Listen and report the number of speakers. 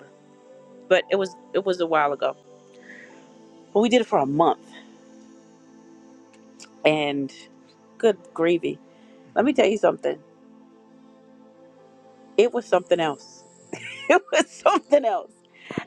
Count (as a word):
one